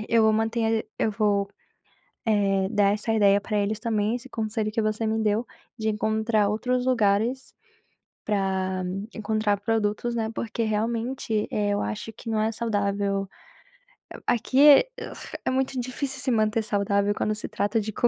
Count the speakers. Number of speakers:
1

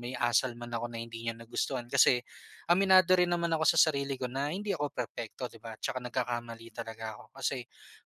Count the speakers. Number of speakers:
1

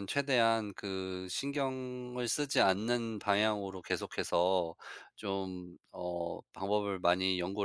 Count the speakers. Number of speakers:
1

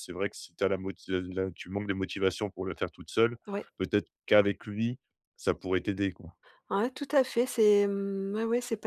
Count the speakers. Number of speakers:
2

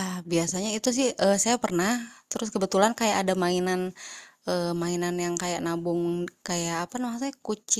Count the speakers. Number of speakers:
1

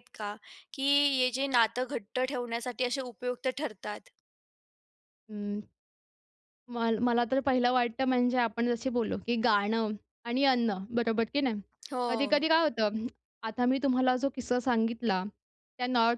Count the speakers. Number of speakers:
2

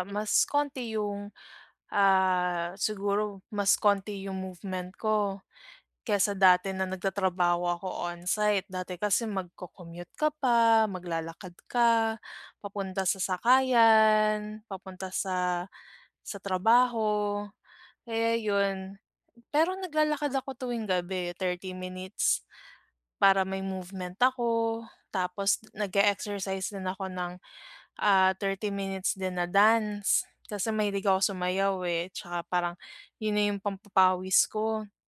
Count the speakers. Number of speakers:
1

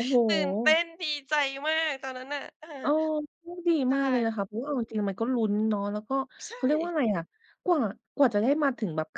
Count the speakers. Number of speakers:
2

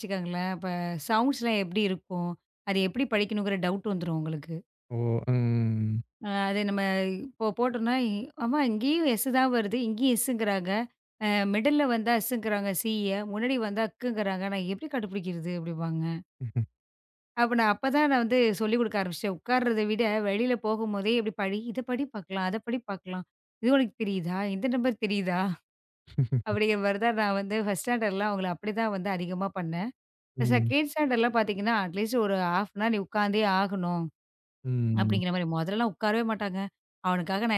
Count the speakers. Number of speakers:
2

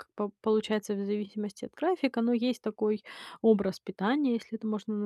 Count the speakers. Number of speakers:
1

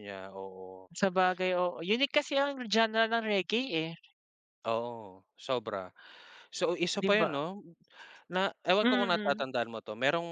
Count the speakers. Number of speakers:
2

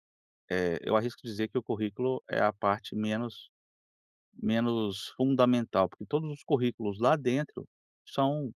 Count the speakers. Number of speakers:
1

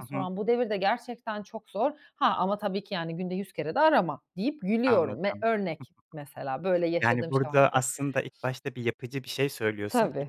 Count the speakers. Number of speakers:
2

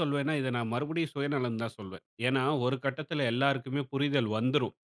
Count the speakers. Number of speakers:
1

